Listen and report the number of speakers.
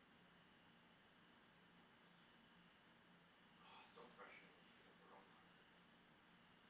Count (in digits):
1